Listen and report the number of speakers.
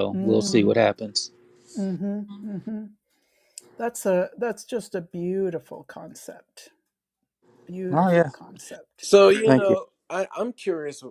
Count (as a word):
three